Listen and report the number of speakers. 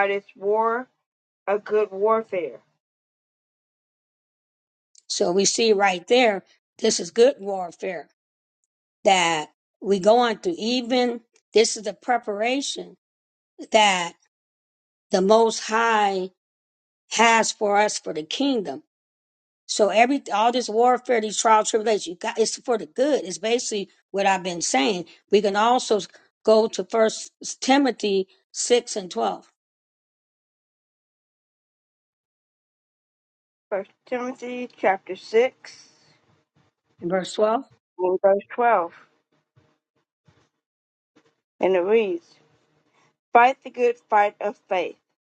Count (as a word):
two